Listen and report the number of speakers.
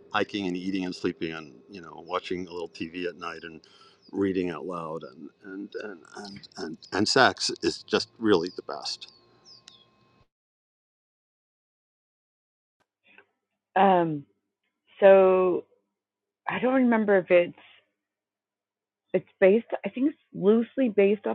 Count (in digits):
2